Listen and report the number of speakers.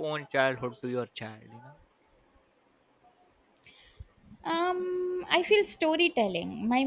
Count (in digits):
2